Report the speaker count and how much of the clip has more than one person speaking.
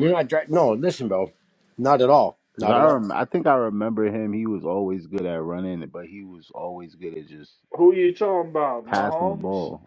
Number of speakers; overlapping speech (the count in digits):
3, about 11%